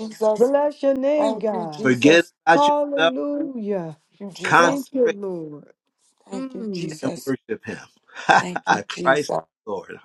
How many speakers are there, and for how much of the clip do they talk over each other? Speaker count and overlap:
three, about 31%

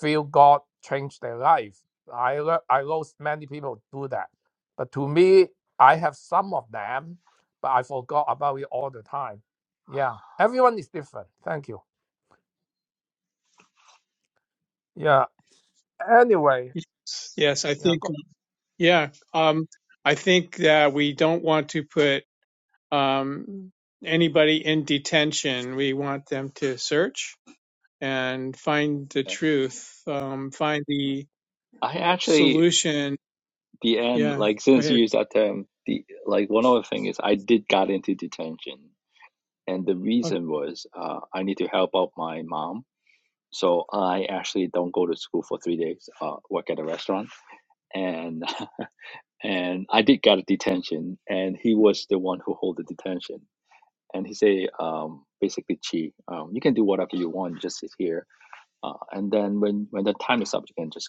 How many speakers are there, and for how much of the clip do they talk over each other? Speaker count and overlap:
three, about 2%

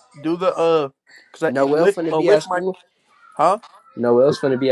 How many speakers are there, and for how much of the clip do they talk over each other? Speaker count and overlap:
two, about 25%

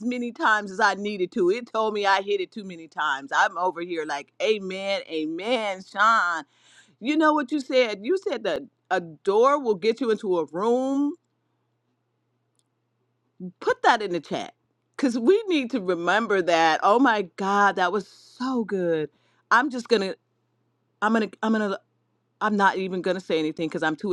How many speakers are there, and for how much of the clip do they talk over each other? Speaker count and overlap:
one, no overlap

